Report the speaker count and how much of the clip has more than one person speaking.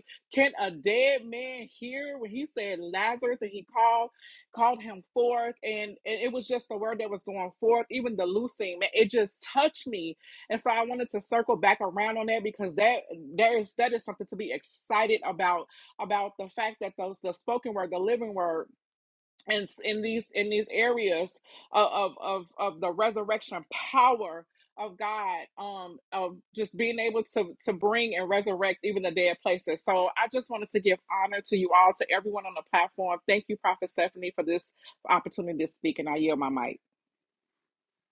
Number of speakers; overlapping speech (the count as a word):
one, no overlap